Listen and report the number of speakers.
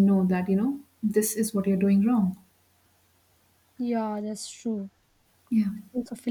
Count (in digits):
2